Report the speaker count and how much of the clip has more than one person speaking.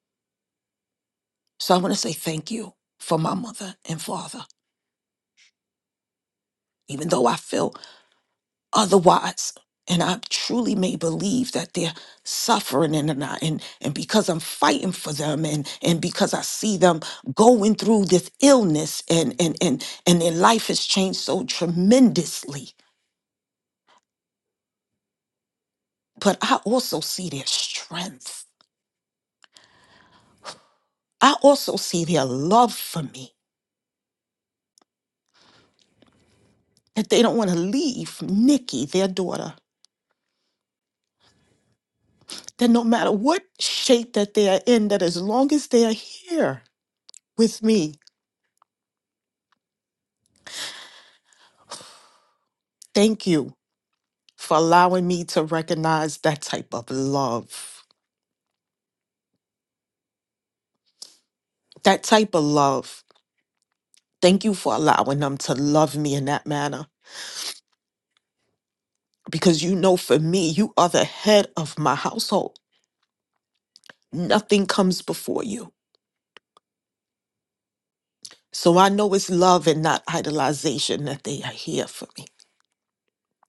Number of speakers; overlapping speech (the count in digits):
1, no overlap